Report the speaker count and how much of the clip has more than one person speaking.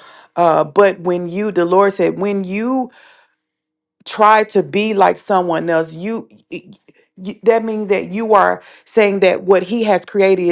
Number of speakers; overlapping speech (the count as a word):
one, no overlap